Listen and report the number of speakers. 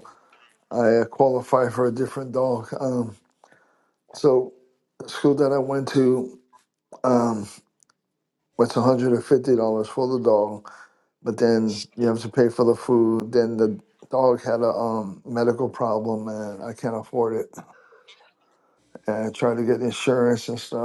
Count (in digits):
1